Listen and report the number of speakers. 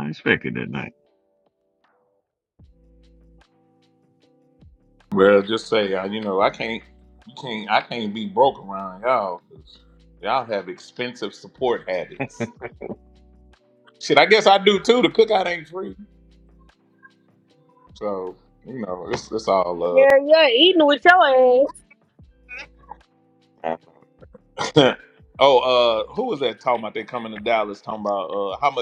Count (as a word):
three